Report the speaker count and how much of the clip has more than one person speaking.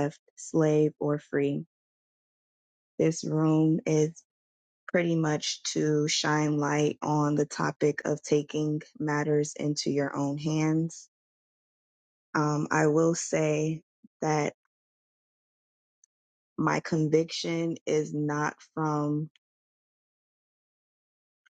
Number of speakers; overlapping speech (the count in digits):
1, no overlap